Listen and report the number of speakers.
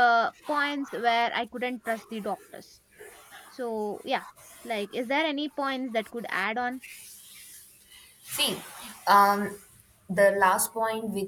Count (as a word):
two